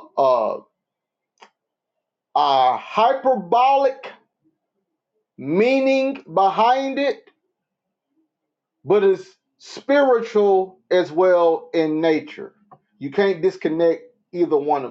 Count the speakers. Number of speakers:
one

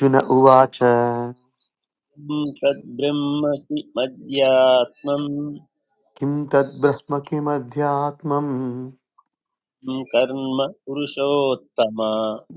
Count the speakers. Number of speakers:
two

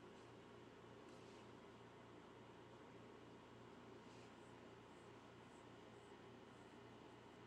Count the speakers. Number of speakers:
zero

